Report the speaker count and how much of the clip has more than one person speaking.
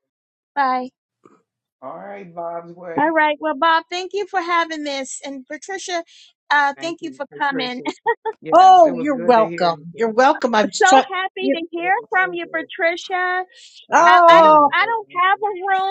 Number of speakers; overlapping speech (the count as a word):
three, about 36%